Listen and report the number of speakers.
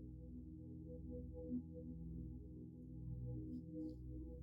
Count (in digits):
0